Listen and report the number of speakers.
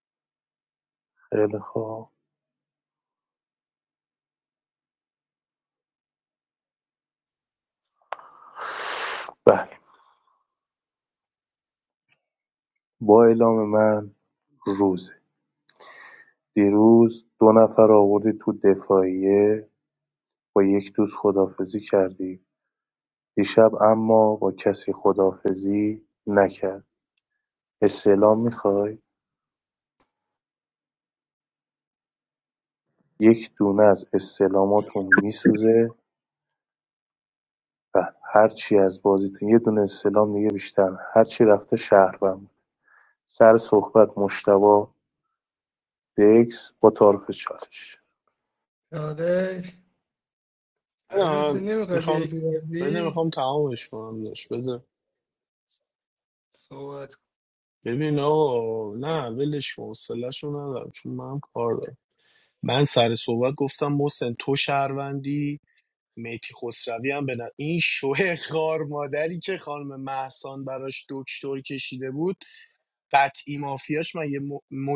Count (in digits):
3